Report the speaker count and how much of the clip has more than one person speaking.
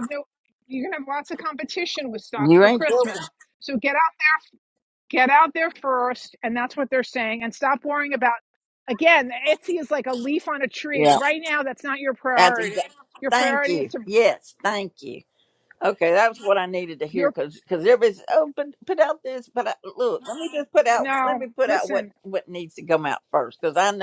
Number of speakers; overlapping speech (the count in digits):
2, about 15%